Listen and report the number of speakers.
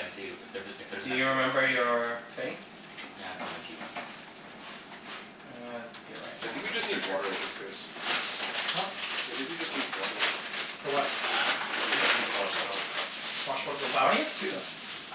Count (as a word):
four